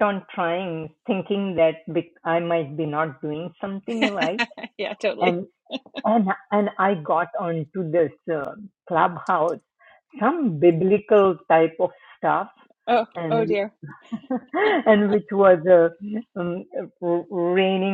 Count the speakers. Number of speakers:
two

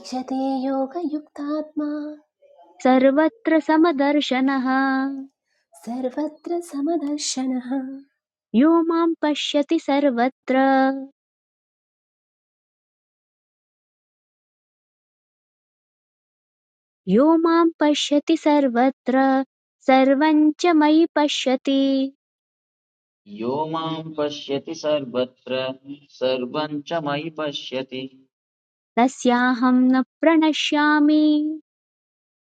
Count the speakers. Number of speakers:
three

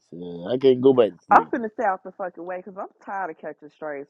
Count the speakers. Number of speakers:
two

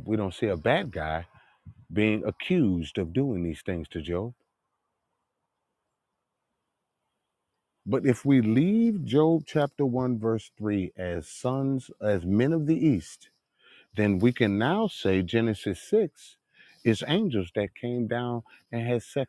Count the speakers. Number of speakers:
one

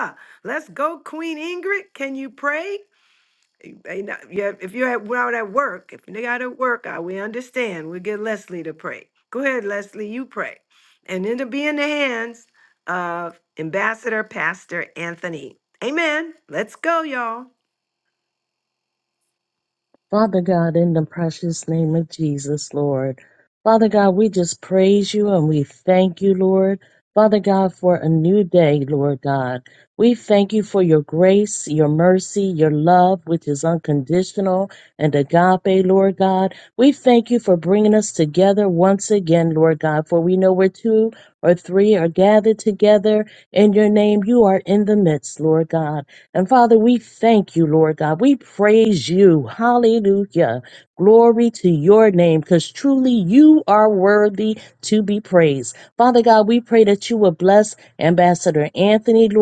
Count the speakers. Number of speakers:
two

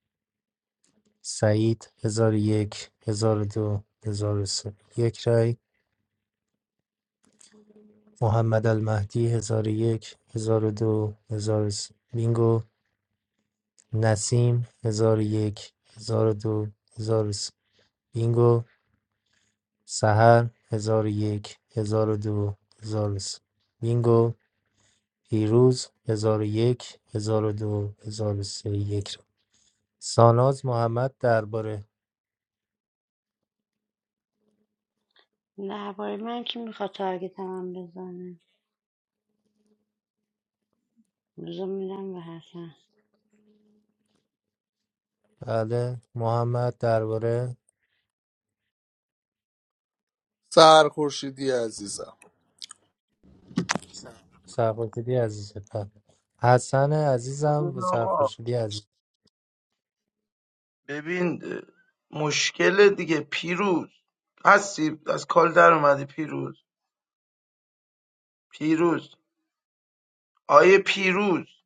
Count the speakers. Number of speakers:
four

